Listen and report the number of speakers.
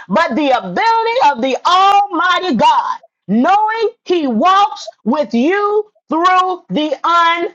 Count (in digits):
1